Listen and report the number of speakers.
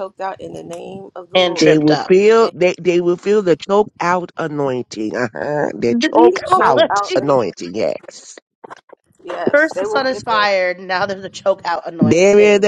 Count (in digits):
3